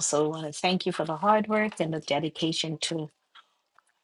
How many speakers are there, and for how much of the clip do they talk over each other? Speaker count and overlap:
one, no overlap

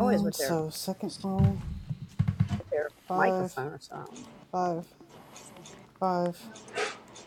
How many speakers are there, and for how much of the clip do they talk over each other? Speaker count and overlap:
two, about 13%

